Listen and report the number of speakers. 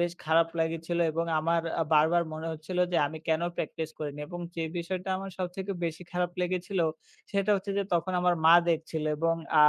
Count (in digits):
1